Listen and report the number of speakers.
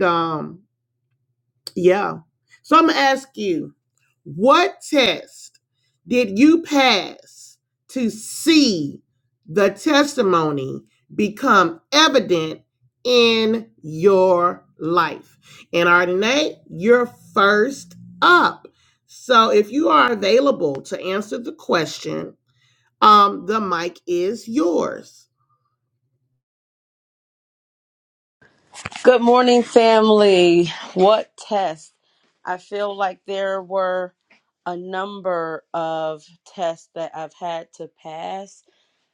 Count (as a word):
two